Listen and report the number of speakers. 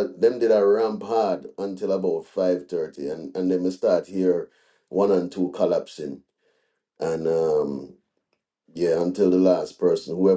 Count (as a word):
one